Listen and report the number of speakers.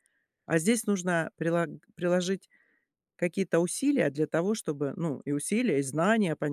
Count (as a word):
one